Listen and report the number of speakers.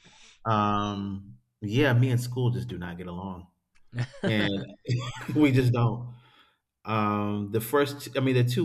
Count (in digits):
1